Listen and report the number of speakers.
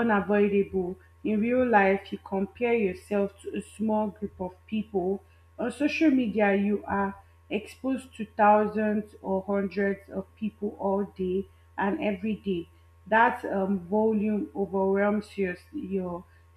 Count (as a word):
one